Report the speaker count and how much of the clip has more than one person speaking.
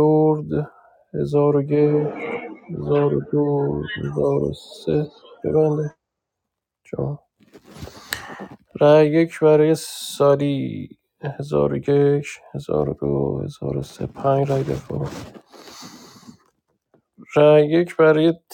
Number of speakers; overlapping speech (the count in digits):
1, no overlap